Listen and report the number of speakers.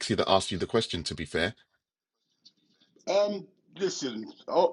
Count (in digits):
2